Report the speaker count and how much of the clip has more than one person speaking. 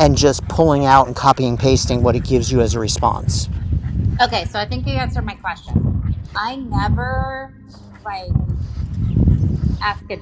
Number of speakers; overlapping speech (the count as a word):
two, no overlap